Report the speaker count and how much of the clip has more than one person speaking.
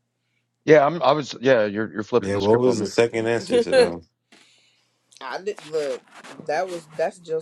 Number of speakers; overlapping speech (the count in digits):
3, about 16%